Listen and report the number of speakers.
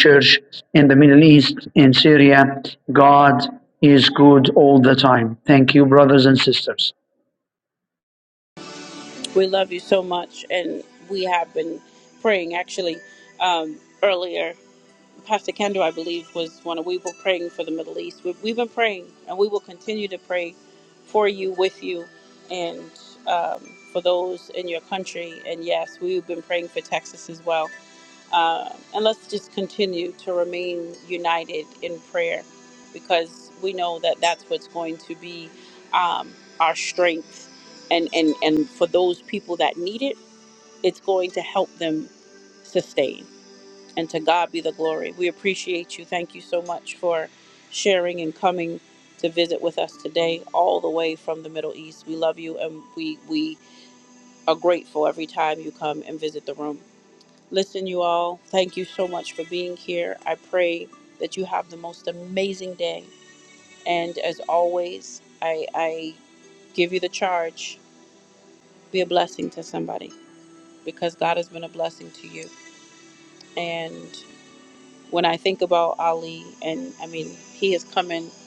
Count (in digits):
2